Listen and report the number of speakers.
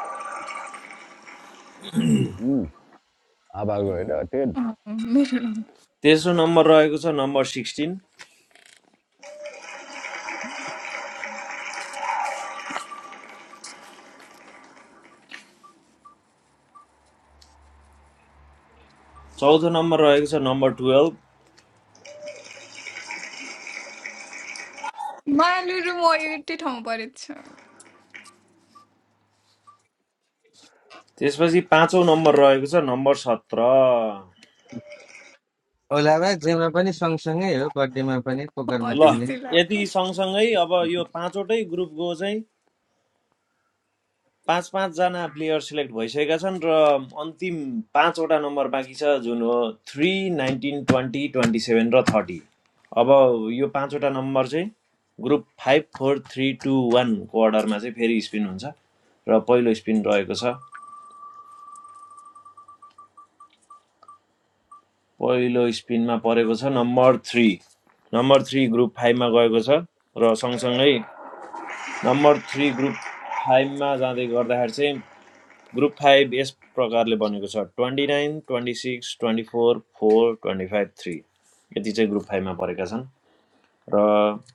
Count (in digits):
4